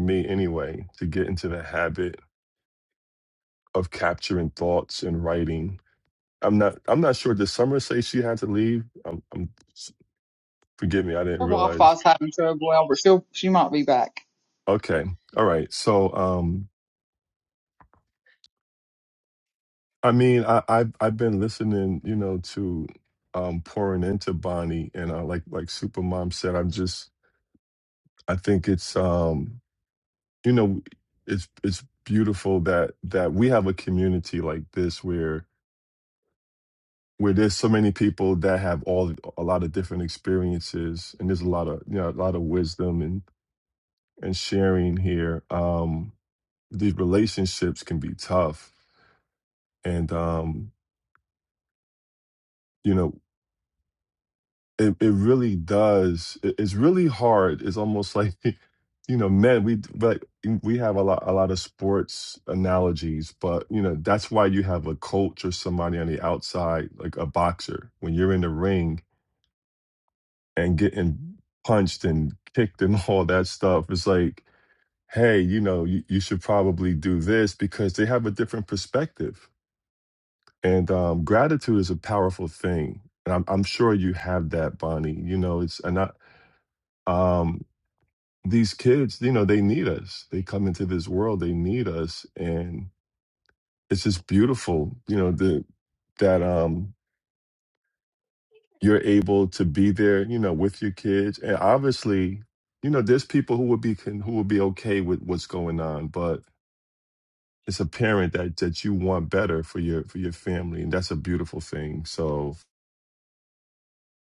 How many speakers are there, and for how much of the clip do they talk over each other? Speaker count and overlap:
two, under 1%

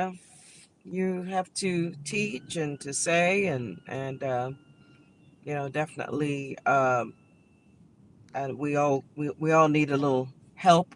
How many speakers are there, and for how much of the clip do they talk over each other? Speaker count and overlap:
one, no overlap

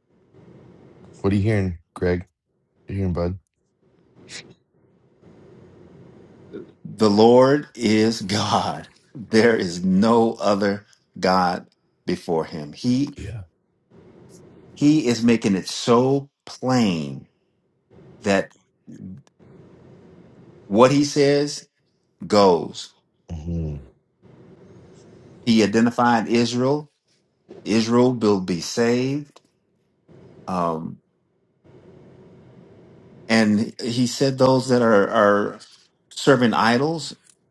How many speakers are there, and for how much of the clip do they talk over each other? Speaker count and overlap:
two, no overlap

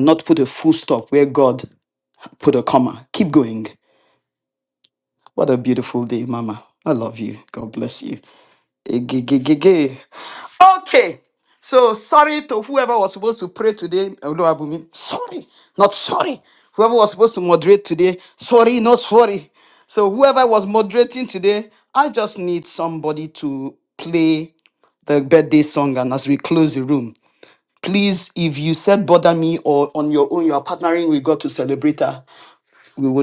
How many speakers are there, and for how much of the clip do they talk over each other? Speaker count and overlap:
one, no overlap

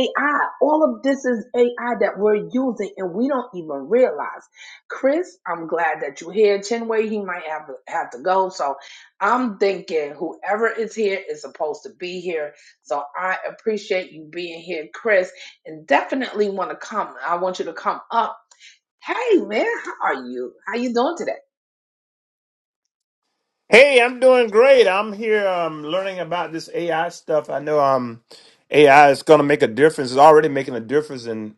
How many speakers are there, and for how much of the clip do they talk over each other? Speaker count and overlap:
two, no overlap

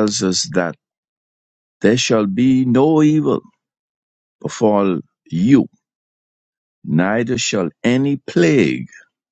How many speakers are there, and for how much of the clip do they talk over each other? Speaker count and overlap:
one, no overlap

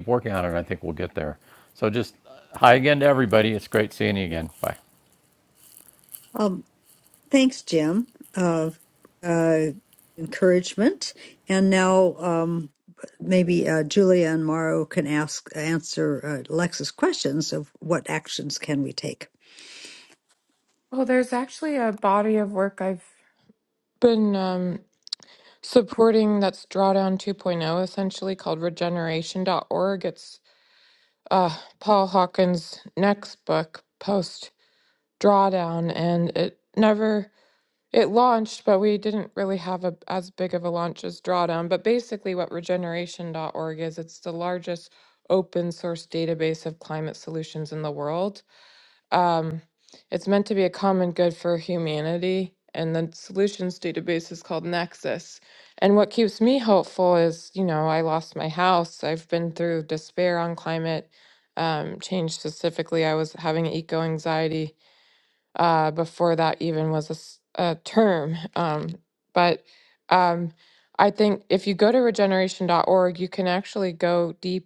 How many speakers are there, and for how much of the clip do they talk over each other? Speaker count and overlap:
three, no overlap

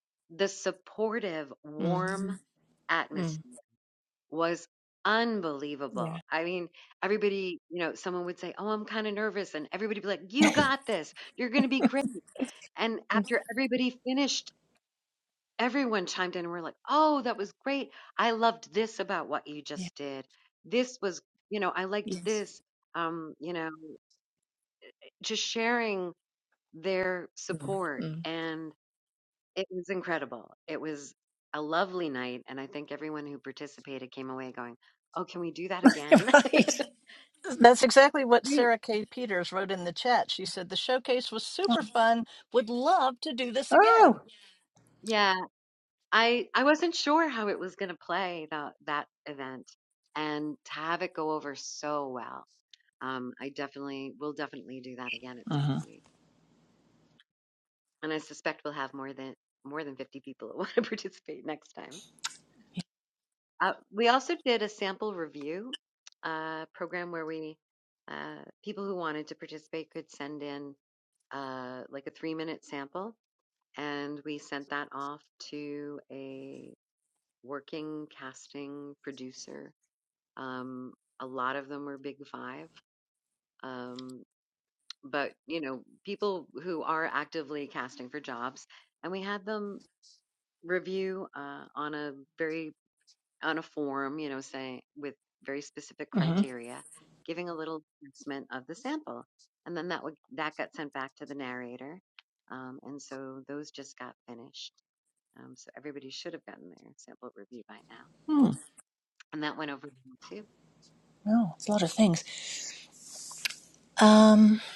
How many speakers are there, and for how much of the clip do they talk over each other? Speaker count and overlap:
three, about 2%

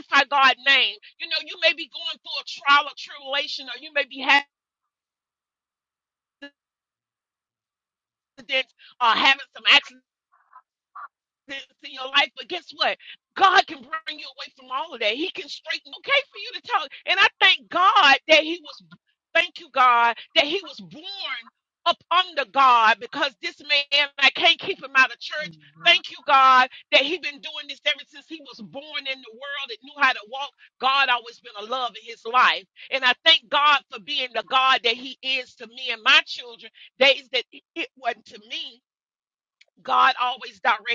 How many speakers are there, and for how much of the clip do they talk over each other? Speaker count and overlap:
one, no overlap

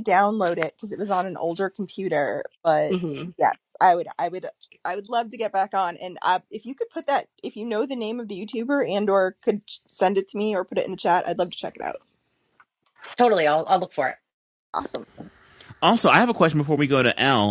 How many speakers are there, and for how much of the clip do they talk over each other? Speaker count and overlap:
three, under 1%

